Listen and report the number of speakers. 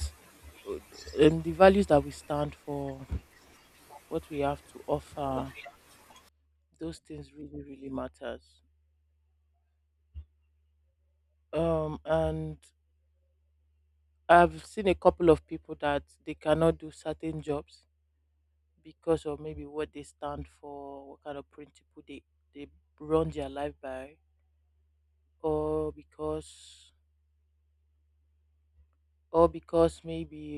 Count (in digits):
1